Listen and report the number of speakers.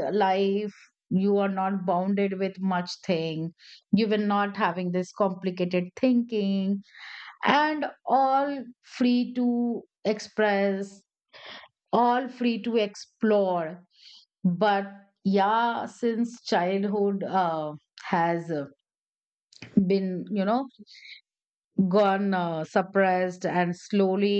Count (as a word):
one